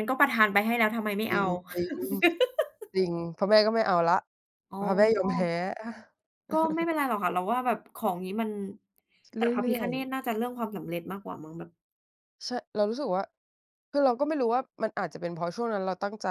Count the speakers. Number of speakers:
2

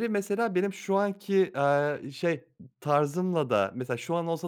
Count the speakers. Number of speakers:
1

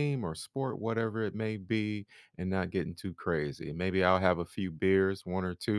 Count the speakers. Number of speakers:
1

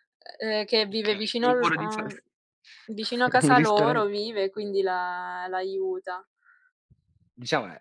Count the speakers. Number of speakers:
2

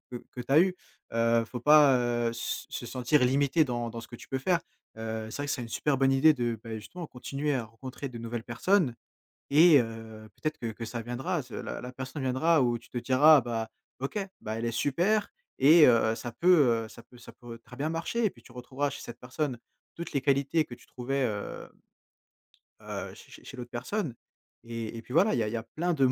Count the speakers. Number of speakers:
1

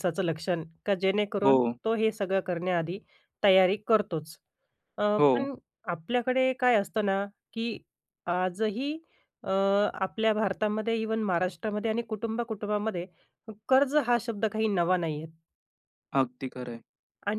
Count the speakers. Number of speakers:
2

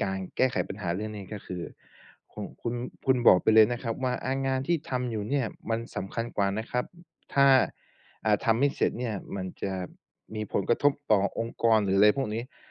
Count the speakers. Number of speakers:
1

